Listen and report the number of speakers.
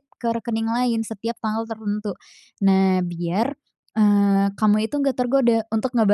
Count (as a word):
one